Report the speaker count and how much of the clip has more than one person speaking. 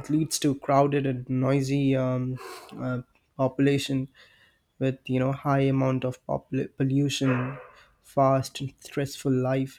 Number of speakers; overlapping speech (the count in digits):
1, no overlap